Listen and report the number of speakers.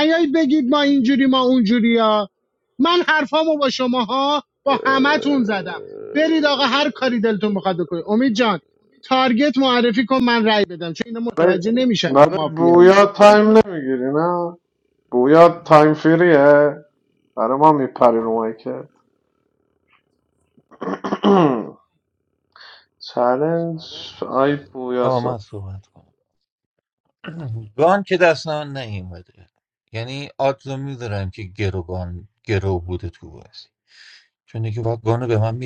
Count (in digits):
3